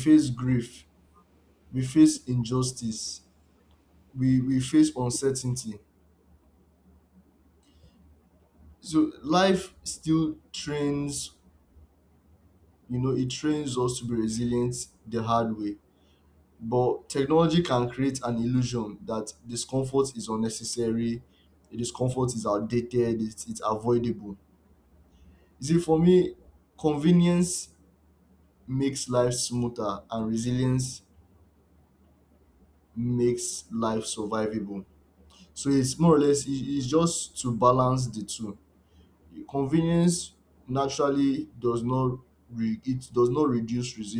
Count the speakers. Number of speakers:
one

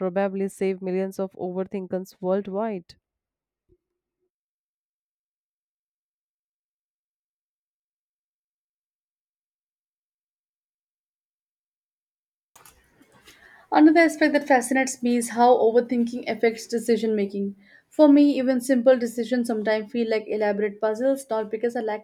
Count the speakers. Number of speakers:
two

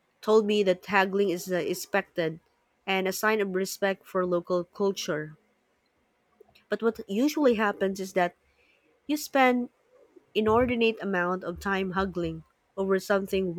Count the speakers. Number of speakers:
one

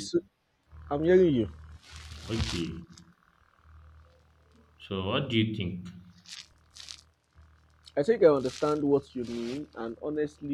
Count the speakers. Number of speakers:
two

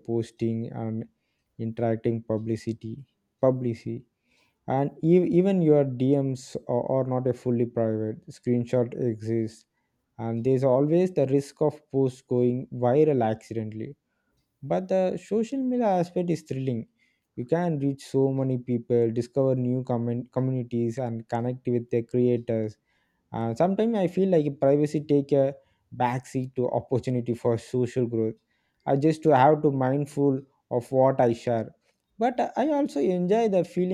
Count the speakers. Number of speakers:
one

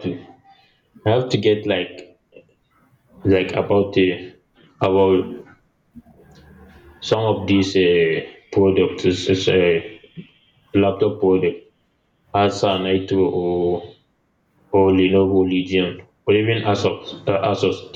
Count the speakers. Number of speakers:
one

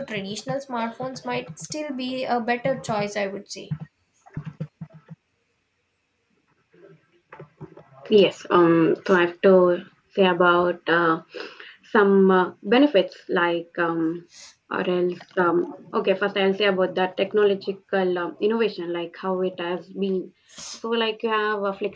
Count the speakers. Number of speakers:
two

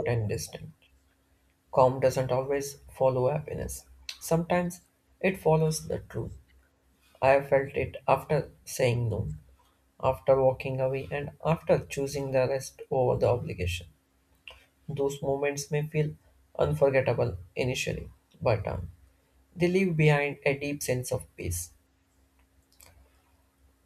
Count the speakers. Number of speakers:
one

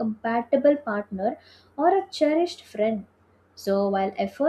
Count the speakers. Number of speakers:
one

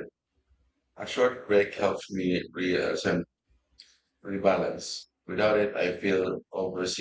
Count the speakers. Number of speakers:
one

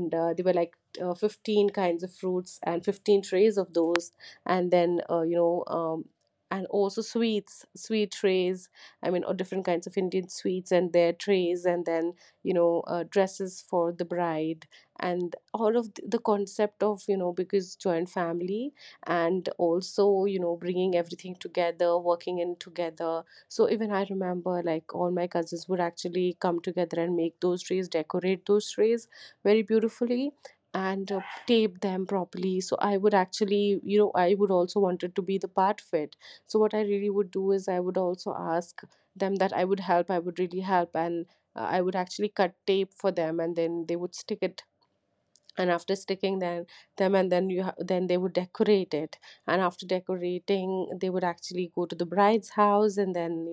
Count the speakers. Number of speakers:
one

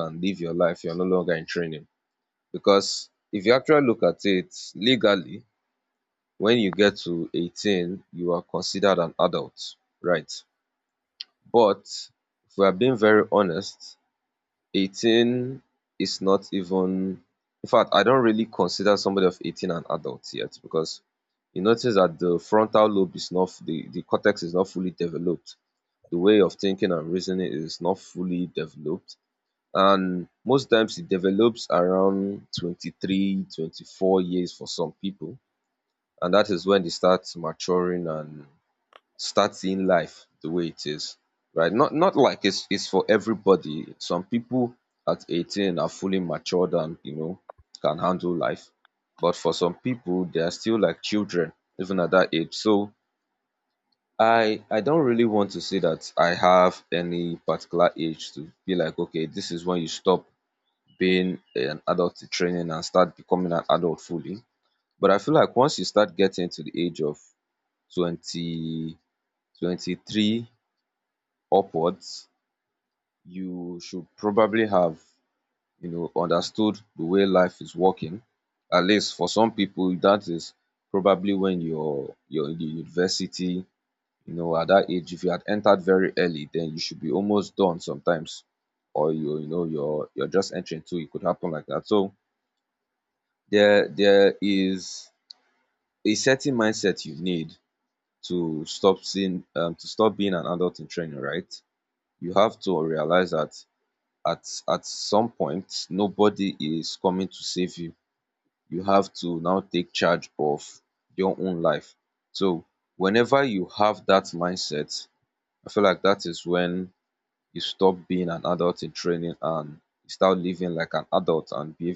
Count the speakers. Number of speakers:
one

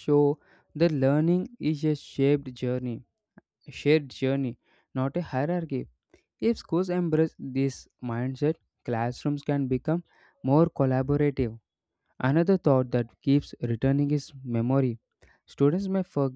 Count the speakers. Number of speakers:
one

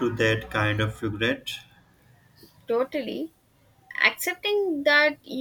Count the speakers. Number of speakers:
two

